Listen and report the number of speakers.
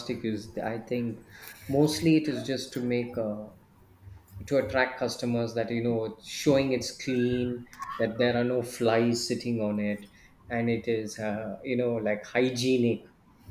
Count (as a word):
one